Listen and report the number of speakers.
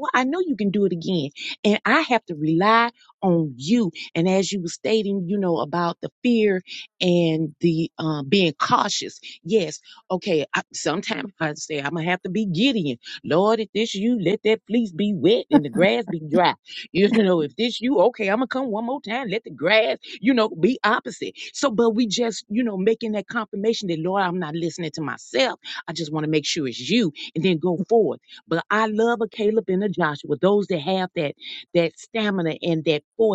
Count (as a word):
one